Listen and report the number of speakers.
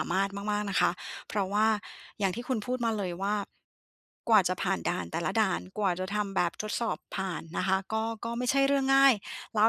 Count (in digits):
1